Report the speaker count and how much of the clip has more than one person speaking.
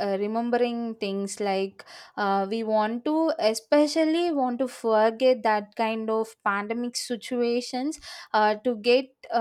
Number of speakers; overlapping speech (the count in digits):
1, no overlap